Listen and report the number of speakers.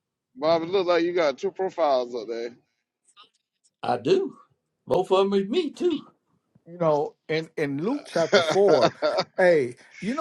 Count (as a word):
three